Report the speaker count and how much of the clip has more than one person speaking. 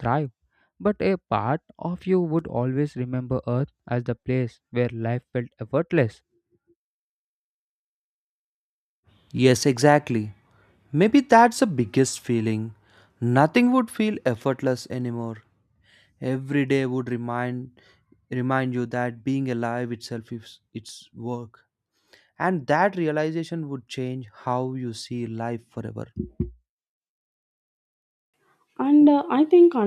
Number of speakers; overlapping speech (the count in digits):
3, no overlap